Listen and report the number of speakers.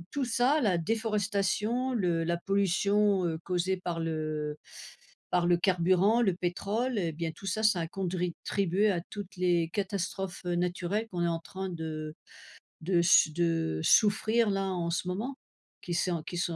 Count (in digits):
1